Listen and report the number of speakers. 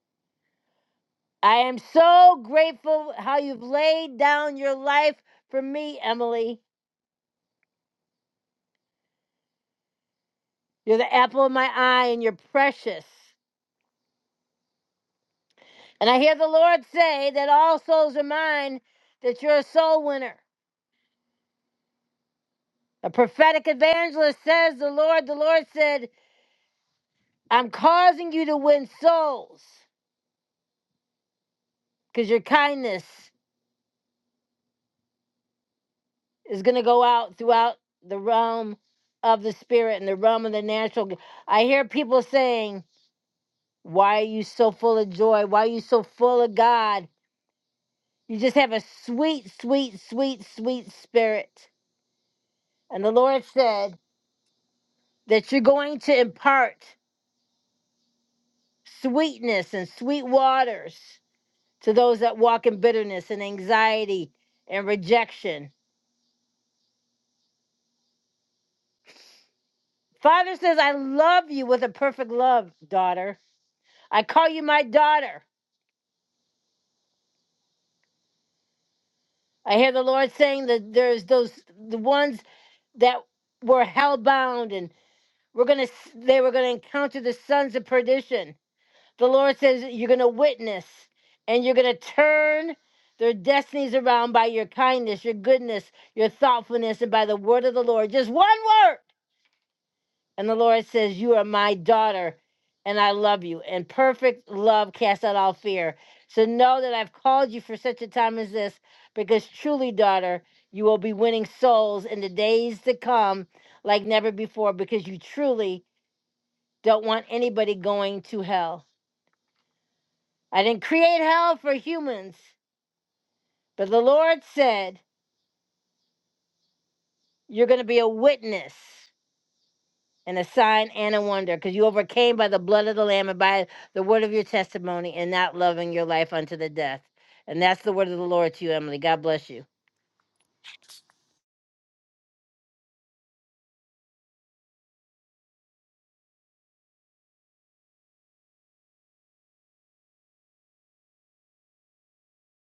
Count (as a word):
one